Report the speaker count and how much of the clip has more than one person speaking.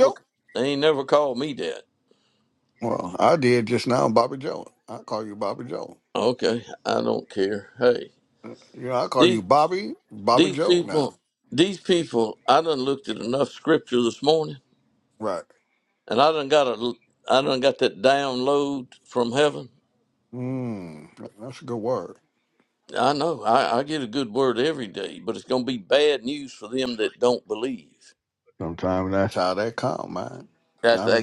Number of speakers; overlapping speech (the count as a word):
two, about 4%